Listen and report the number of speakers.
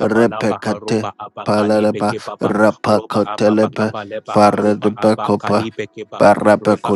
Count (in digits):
2